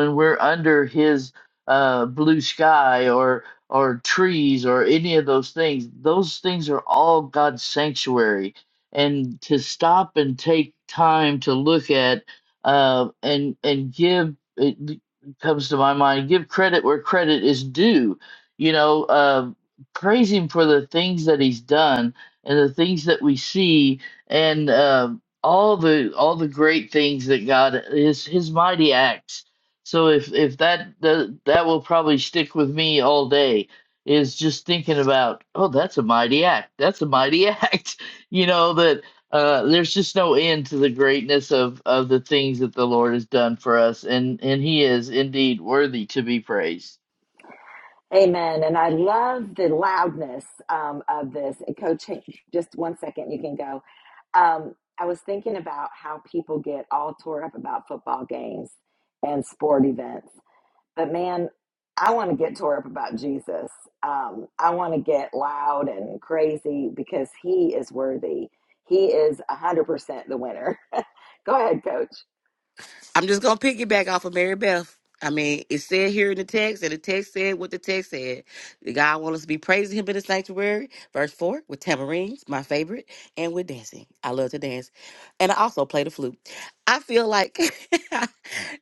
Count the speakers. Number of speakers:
three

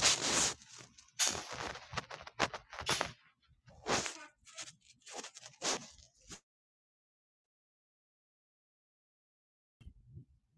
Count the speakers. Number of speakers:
zero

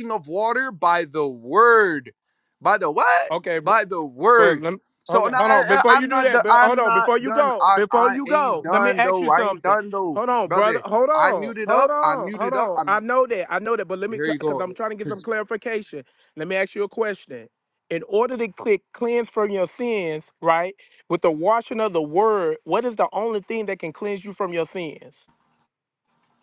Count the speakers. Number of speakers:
two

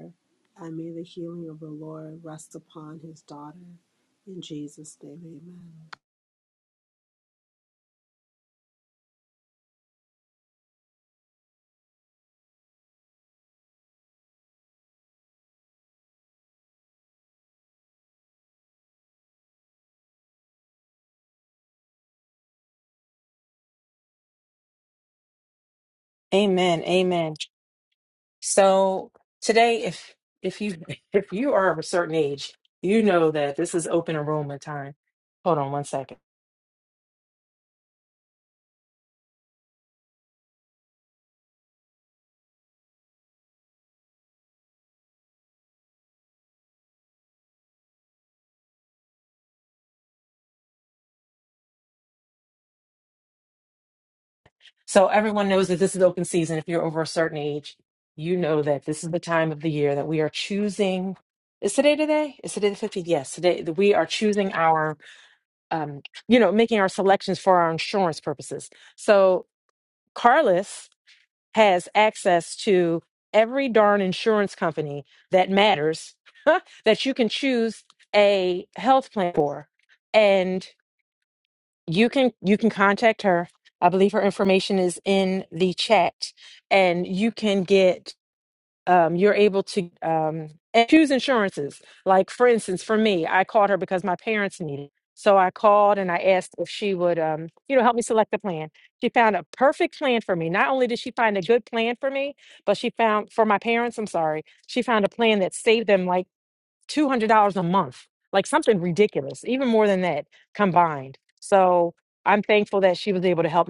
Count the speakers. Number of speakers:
two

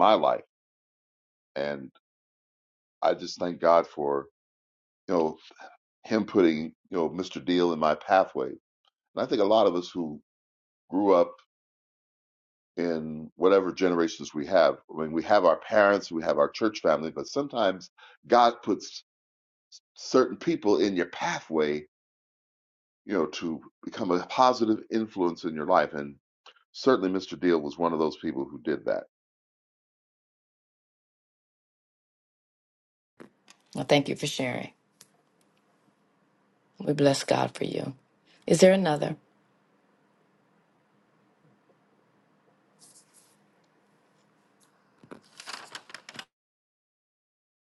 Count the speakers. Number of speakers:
two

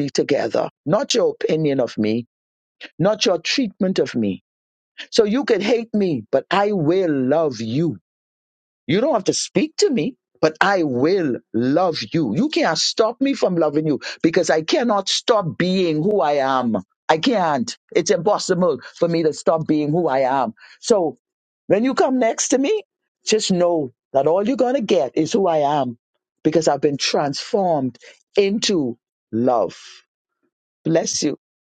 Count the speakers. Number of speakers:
one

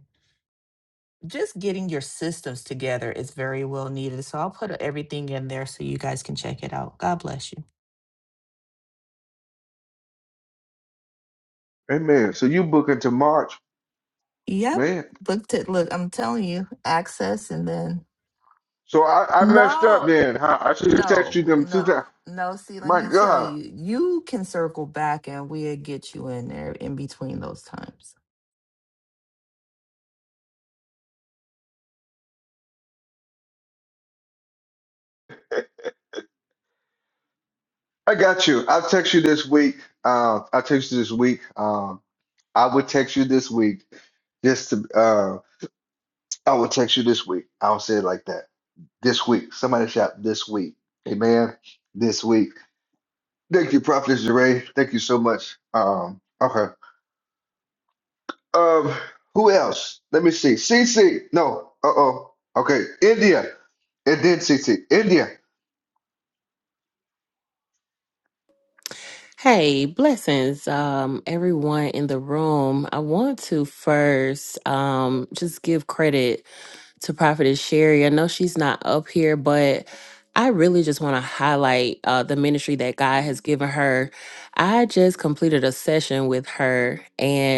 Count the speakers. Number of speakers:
three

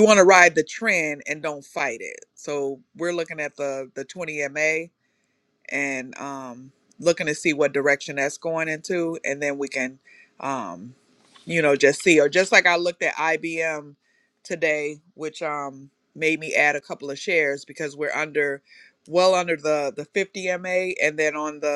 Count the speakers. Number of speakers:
one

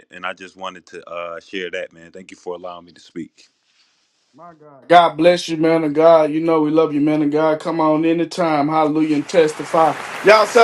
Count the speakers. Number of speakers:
two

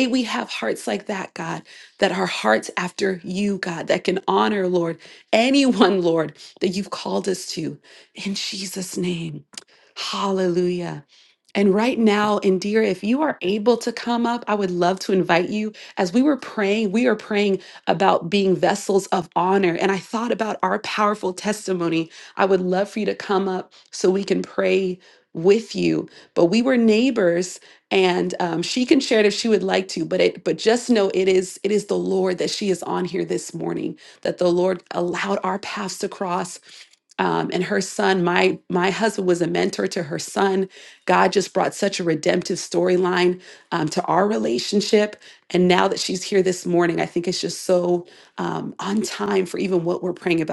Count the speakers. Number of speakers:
one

